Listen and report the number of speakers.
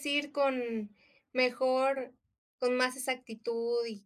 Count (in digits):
1